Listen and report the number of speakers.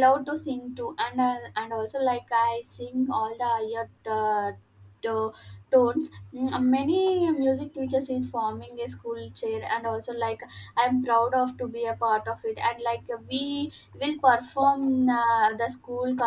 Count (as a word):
one